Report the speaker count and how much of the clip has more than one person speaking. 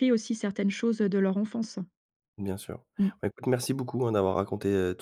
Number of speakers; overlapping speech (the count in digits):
2, no overlap